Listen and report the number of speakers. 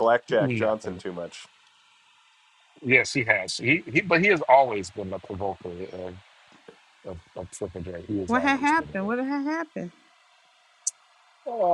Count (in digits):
3